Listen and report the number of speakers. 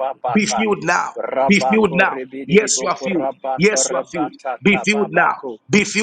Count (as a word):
two